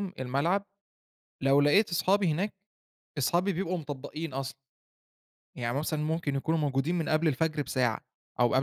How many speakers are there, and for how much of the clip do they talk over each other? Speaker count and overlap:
1, no overlap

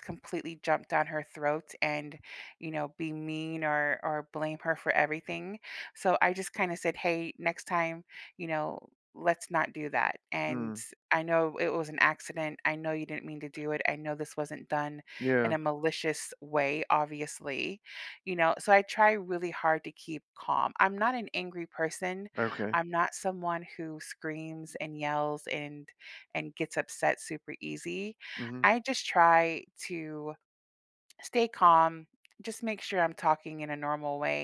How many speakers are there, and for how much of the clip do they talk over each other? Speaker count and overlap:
2, about 1%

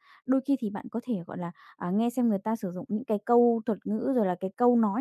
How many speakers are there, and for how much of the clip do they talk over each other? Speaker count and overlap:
1, no overlap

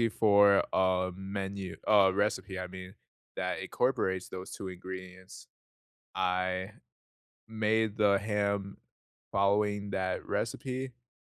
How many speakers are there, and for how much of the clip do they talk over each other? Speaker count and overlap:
1, no overlap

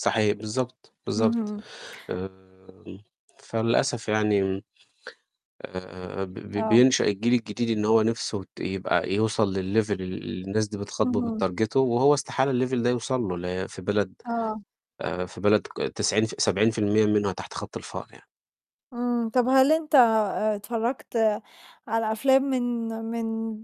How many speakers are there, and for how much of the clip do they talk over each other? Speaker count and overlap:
2, about 3%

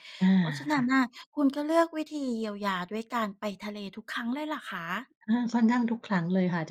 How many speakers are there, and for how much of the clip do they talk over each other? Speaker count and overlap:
2, about 3%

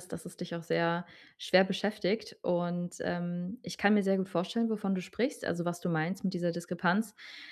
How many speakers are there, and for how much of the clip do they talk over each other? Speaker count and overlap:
1, no overlap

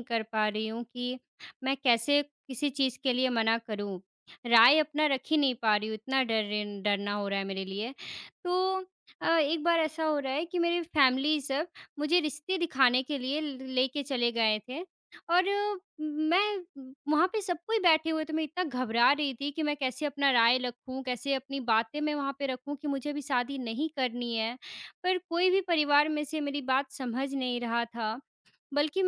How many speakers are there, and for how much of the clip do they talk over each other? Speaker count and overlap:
1, no overlap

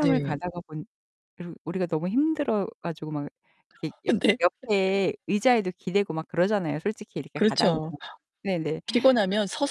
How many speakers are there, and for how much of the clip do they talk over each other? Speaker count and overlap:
2, about 11%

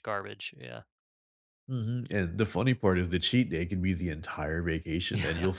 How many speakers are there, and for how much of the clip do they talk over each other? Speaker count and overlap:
2, about 8%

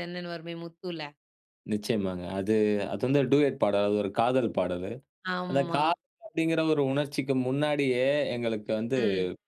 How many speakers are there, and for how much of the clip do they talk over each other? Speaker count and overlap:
2, about 5%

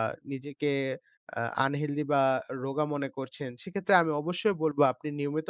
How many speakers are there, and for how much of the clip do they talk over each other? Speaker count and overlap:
1, no overlap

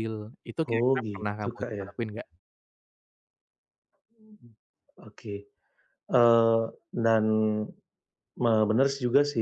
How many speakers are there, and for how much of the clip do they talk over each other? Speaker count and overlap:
2, about 13%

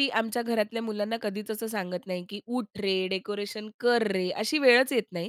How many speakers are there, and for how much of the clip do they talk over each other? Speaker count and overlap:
1, no overlap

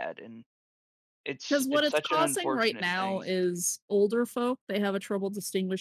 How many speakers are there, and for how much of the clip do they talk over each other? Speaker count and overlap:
2, about 30%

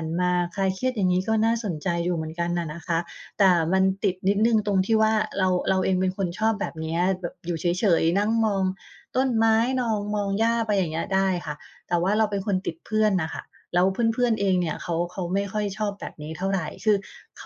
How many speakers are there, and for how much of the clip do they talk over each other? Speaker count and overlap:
1, no overlap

